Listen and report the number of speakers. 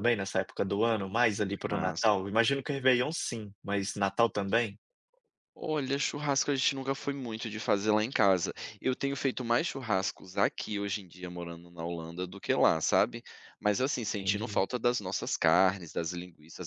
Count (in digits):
2